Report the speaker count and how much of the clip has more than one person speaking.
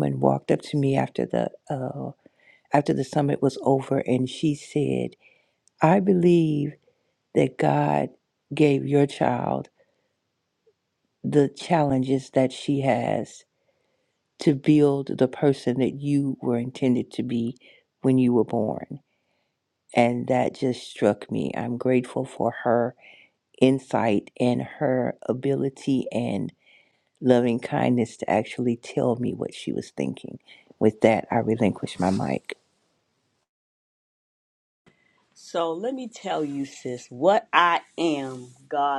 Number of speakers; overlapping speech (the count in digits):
2, no overlap